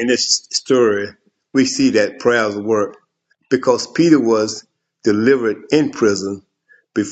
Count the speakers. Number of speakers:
1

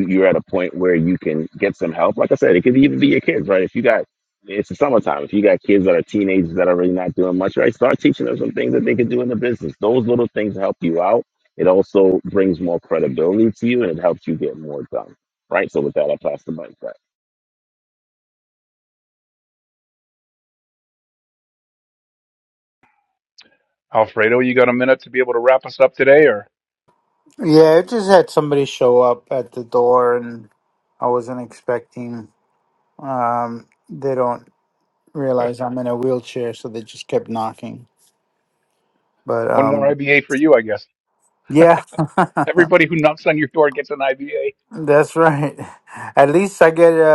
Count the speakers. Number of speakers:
3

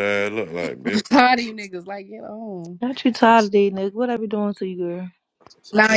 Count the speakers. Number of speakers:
3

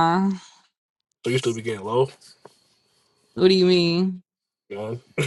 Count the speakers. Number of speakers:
2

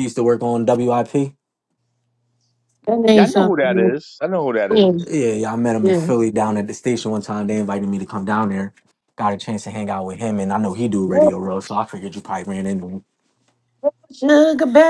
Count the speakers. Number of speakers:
3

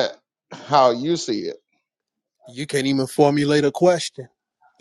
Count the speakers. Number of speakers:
2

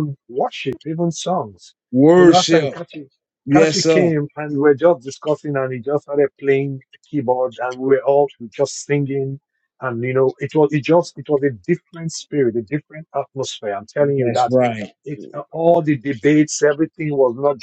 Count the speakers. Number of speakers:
2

